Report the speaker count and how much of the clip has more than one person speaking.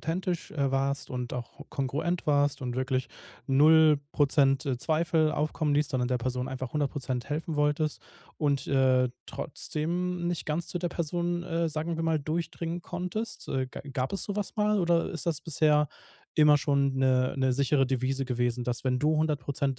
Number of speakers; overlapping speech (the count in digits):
1, no overlap